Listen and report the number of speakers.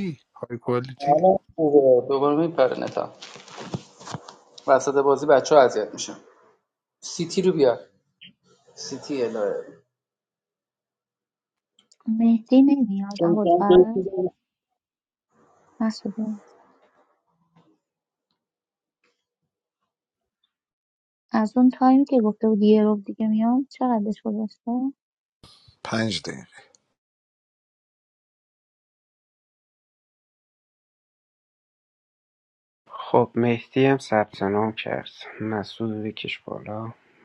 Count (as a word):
four